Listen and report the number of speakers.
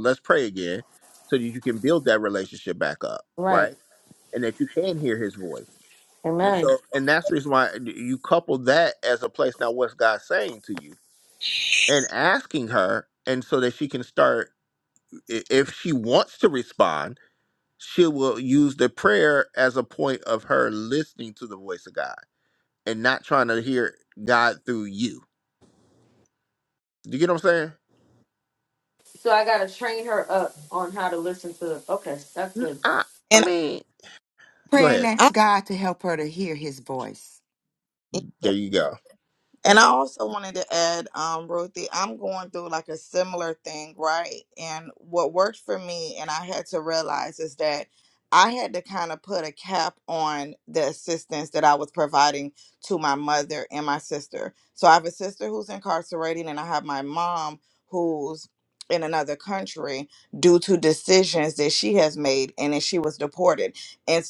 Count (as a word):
four